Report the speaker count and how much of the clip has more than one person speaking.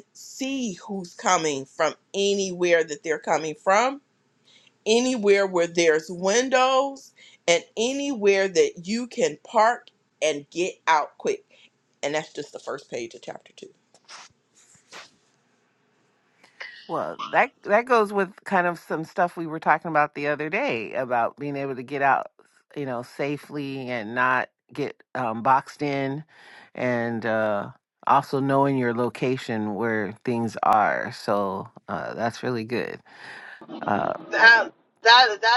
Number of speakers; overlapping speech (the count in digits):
3, no overlap